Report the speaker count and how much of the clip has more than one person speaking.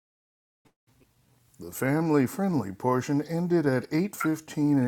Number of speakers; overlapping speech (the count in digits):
1, no overlap